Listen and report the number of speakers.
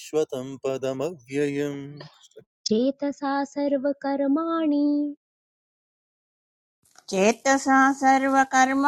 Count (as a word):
three